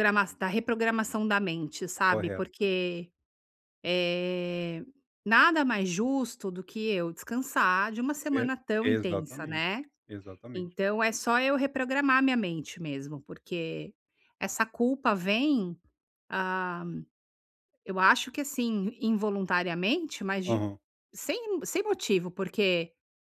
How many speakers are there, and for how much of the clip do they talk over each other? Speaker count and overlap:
2, about 6%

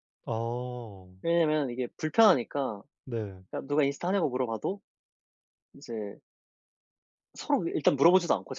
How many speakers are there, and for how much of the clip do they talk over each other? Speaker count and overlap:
2, no overlap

